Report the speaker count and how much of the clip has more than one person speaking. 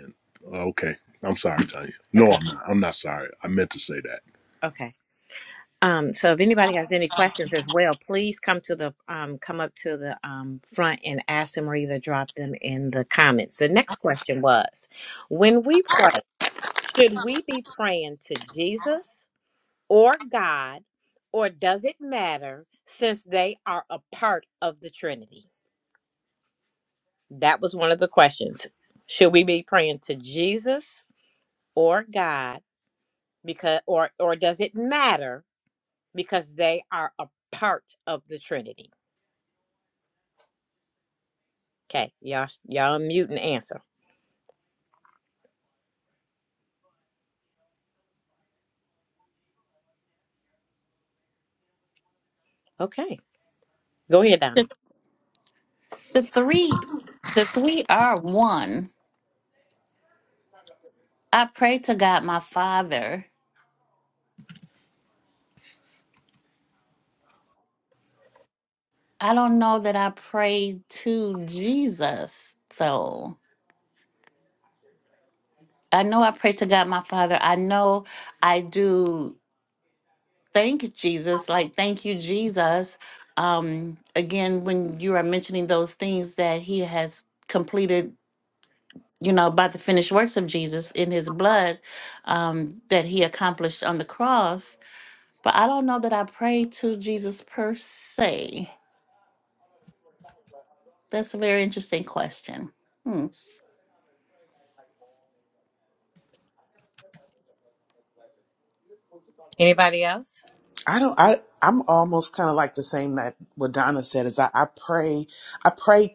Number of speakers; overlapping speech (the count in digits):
4, under 1%